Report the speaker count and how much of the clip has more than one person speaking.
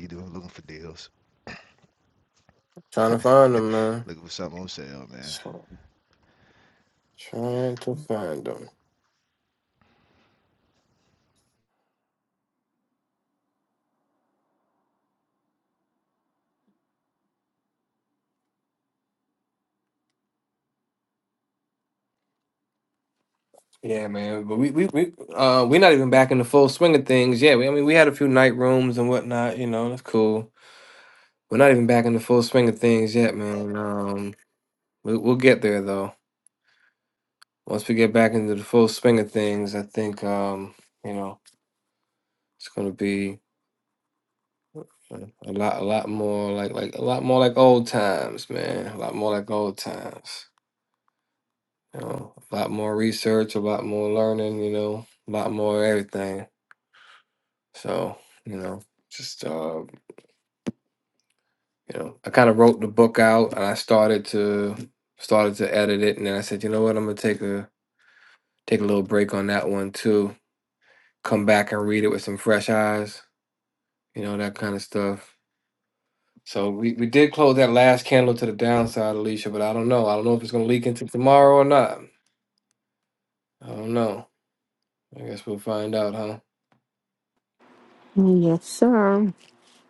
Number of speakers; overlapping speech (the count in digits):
3, under 1%